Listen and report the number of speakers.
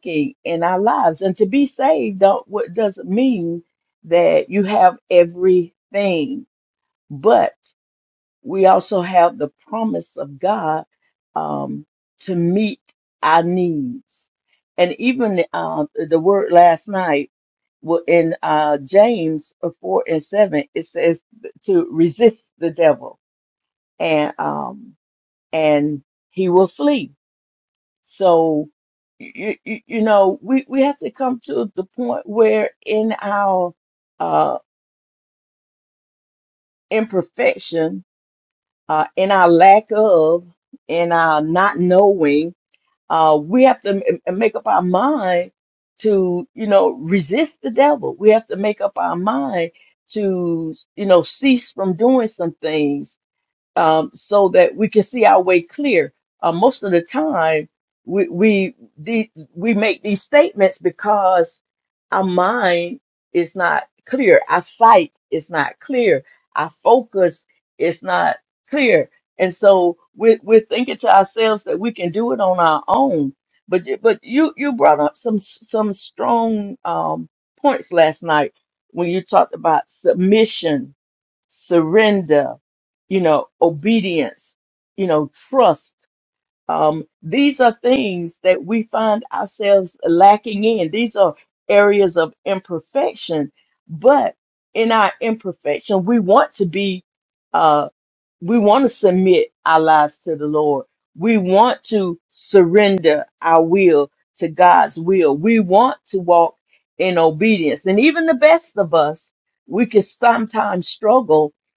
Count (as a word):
one